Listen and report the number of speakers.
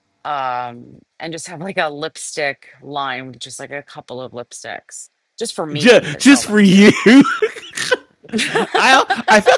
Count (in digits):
2